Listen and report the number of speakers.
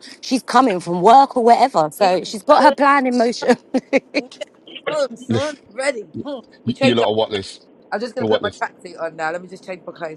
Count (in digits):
3